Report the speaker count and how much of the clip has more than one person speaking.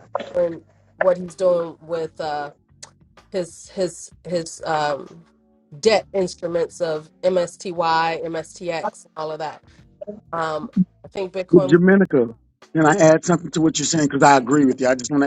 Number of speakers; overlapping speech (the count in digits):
2, about 2%